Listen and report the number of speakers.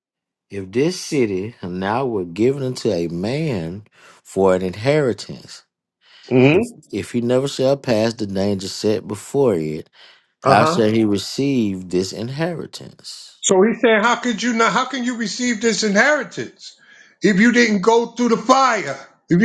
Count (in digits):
2